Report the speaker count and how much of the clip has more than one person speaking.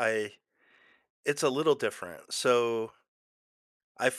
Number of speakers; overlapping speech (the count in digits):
1, no overlap